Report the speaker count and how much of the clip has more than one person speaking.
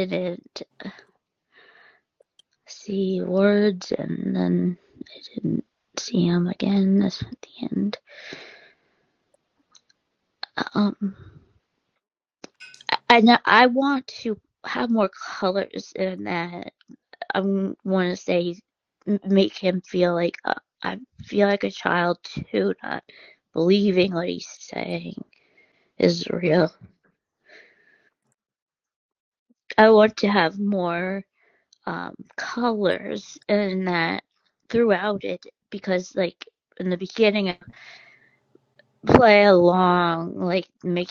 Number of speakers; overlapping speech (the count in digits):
1, no overlap